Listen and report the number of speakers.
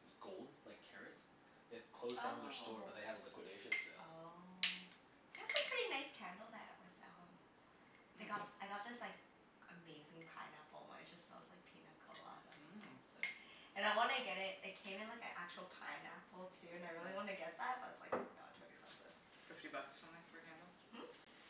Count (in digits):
3